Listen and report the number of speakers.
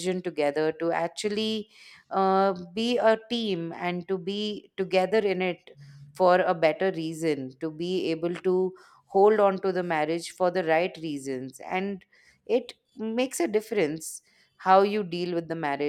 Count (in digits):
1